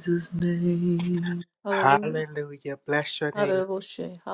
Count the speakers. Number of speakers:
3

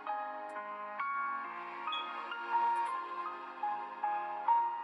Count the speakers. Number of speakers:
0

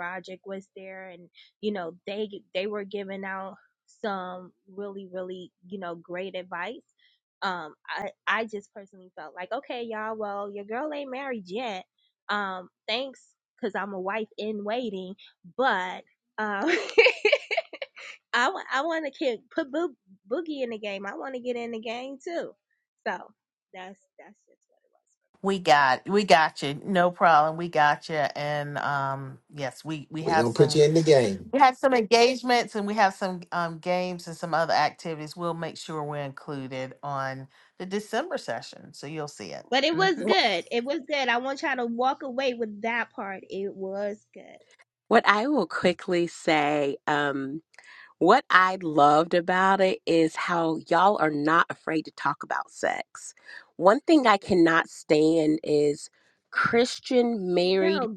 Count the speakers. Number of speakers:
4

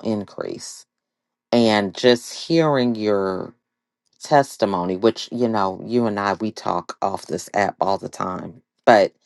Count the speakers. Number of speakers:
1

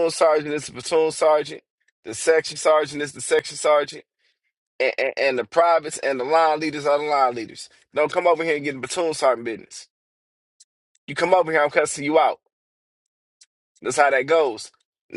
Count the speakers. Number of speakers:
1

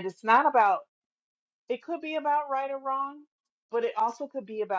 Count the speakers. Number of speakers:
1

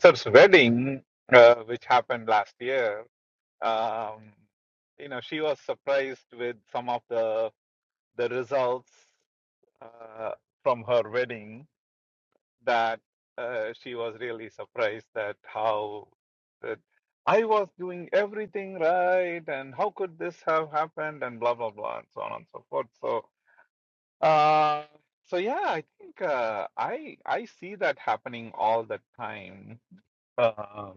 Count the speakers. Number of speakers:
1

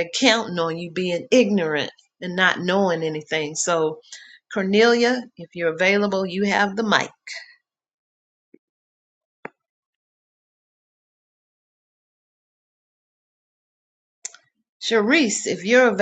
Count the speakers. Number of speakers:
1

